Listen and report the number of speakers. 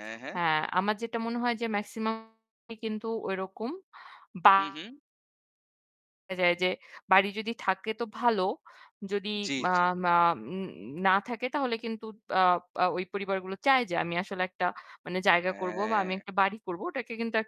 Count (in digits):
2